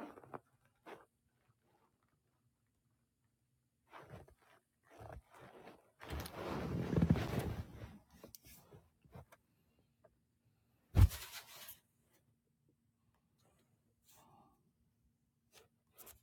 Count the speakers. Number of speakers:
zero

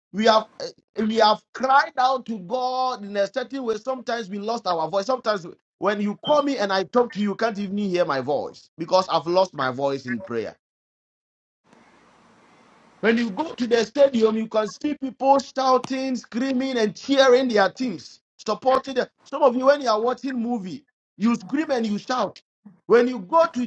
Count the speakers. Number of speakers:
one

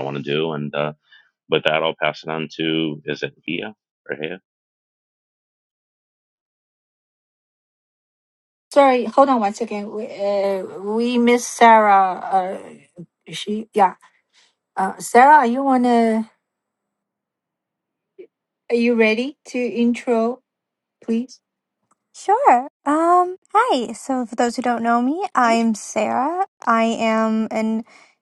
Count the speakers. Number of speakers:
three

